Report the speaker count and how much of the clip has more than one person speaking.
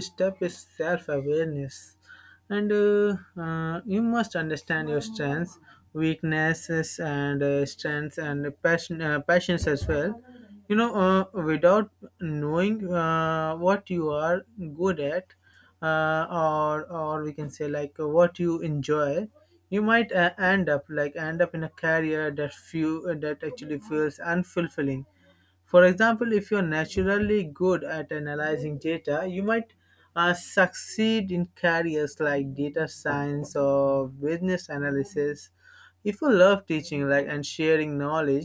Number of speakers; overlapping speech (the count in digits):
1, no overlap